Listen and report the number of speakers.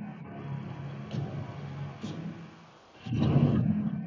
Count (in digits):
0